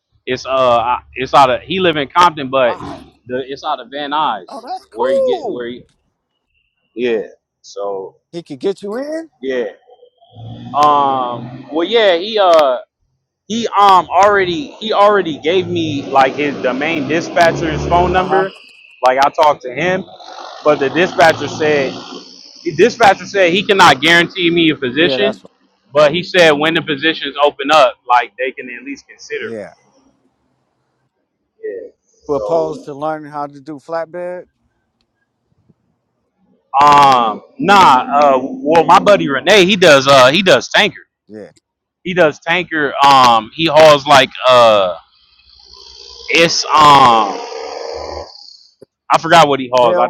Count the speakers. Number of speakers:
2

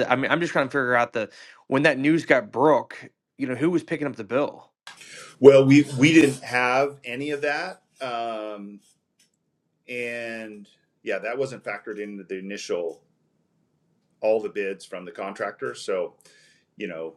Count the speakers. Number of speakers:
2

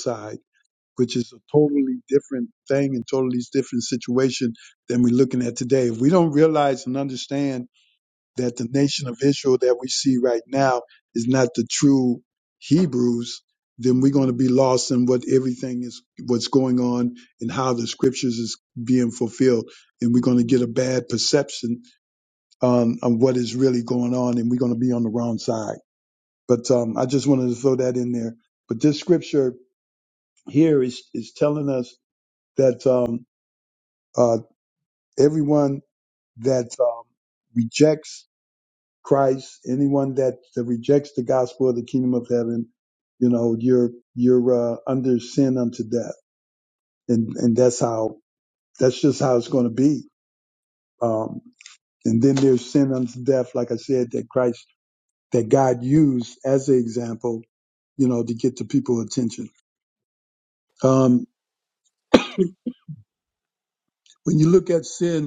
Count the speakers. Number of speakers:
1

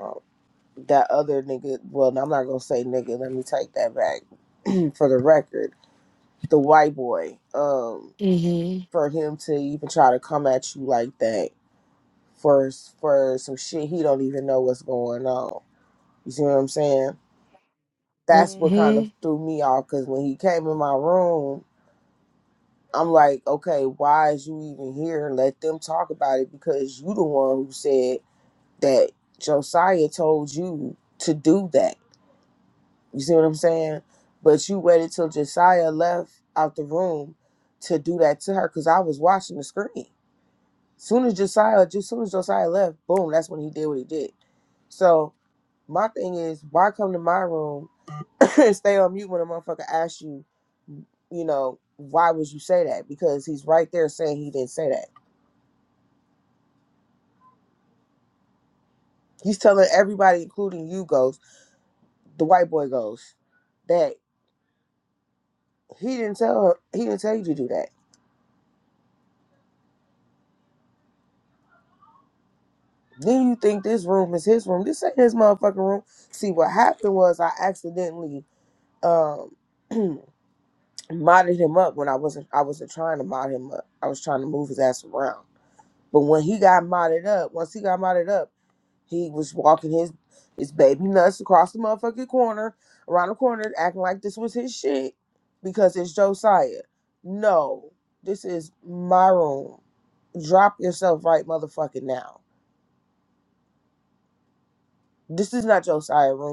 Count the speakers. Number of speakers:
2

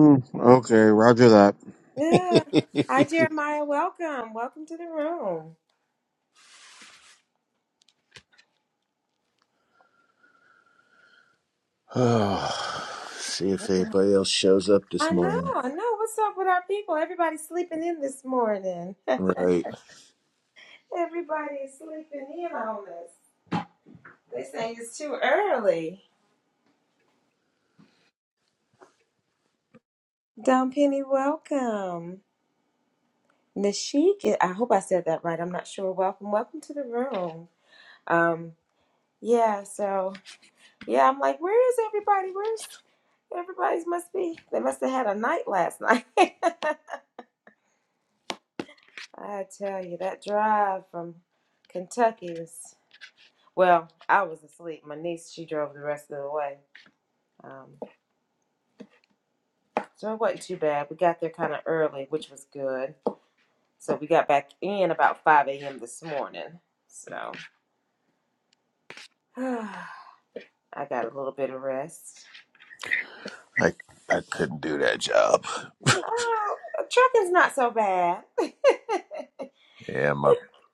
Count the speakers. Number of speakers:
3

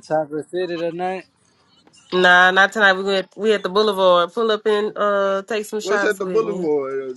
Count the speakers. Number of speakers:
3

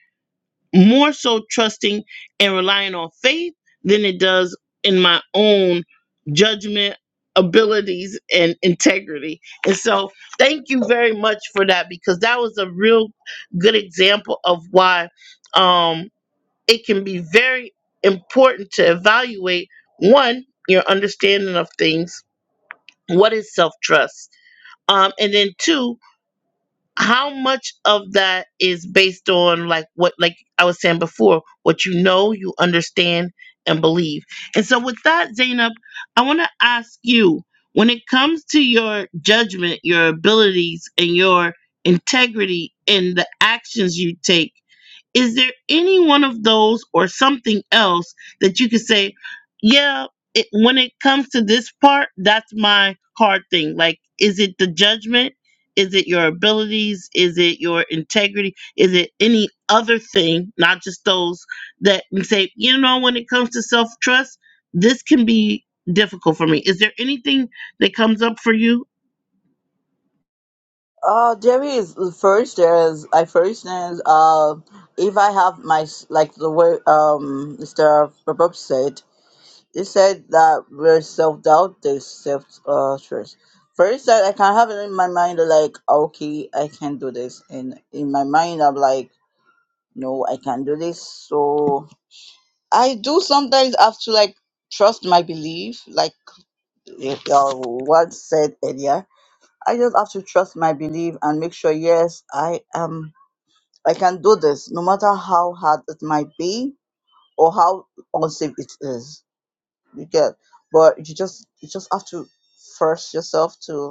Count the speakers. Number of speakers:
2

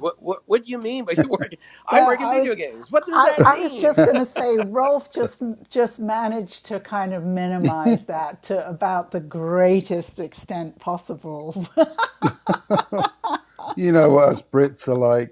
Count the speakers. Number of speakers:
3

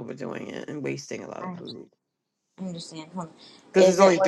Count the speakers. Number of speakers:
2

